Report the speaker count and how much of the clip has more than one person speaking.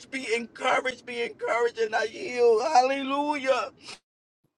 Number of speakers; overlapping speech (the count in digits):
1, no overlap